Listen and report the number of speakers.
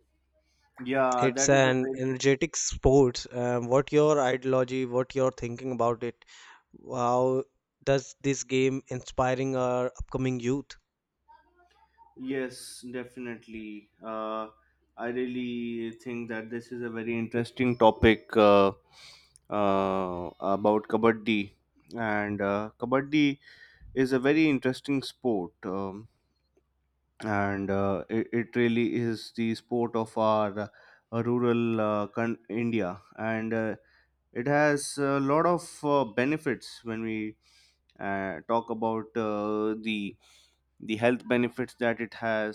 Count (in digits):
2